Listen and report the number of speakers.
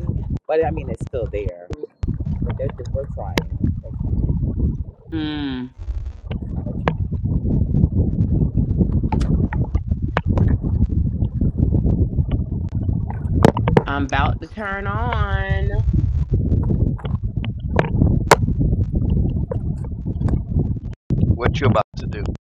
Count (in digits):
3